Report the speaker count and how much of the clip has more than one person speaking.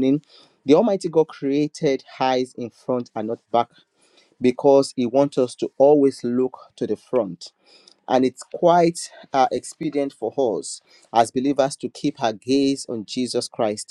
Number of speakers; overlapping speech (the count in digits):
1, no overlap